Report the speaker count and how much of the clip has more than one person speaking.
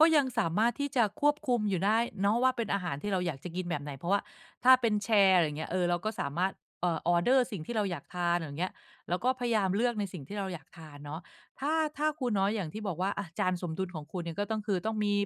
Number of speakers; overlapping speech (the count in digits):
1, no overlap